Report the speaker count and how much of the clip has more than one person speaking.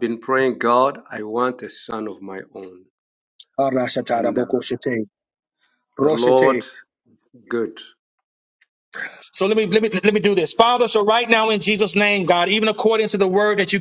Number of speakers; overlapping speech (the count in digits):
2, about 7%